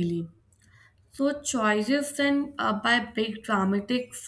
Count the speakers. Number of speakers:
1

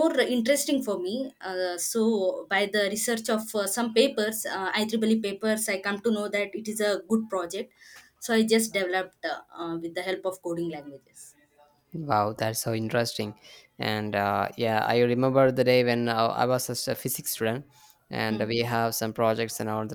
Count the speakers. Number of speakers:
2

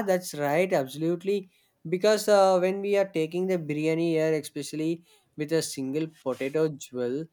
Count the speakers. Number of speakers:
1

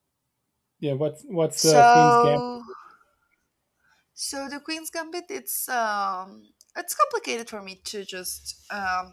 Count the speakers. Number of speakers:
2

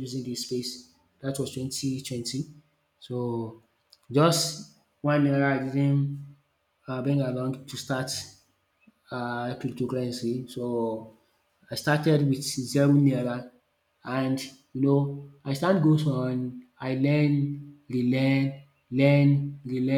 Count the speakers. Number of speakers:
1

